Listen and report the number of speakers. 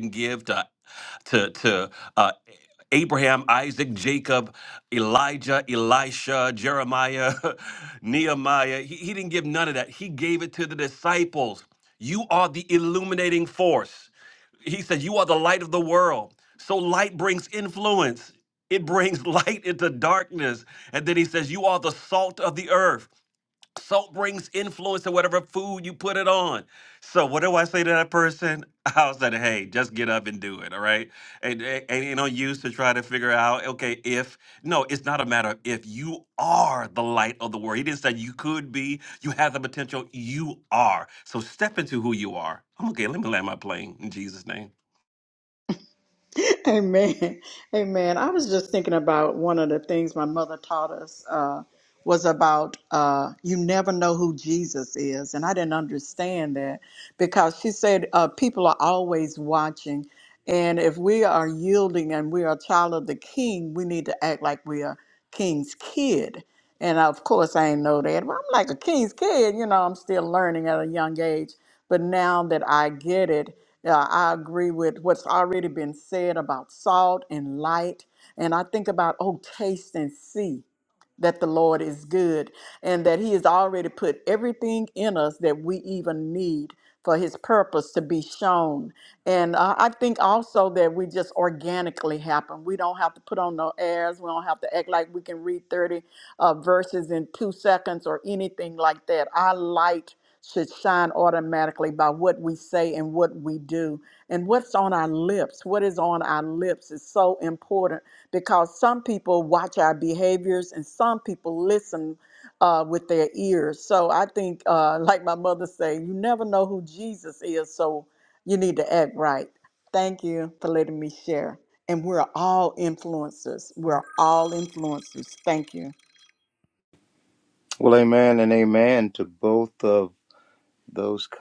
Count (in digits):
3